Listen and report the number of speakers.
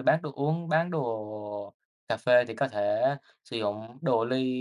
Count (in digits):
1